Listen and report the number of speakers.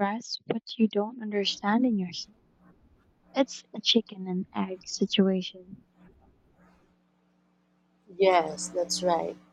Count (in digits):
2